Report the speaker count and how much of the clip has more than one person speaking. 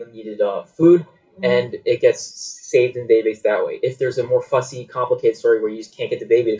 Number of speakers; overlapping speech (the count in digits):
1, no overlap